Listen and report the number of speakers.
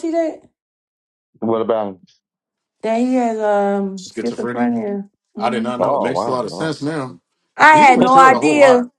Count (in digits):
3